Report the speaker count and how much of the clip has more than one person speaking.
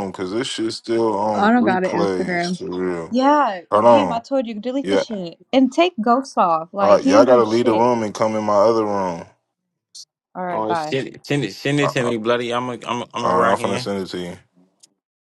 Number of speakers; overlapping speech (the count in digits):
3, about 29%